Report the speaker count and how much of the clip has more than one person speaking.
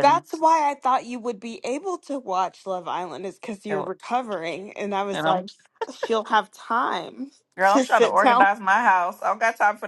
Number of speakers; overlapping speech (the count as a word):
two, about 15%